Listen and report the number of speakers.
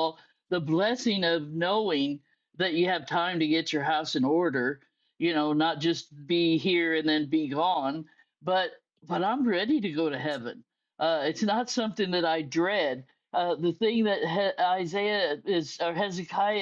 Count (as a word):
one